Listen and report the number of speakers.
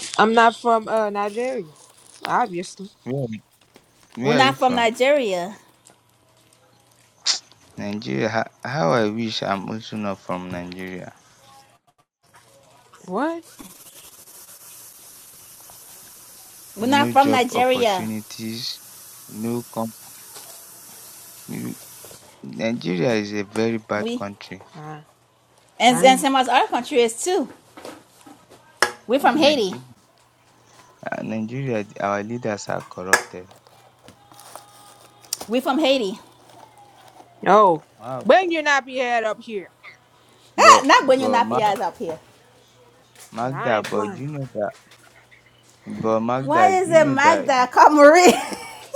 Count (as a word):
three